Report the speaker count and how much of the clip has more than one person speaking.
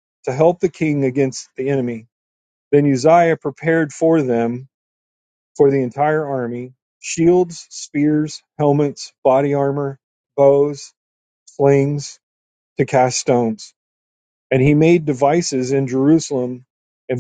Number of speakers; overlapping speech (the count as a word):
one, no overlap